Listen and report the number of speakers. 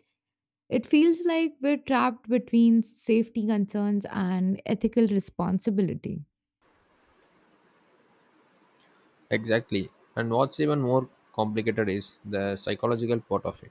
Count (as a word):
two